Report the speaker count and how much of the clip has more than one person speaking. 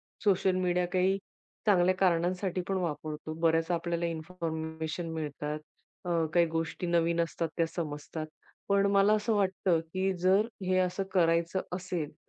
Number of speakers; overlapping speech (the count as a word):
one, no overlap